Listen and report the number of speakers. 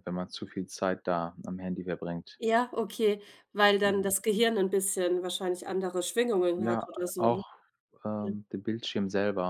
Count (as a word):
two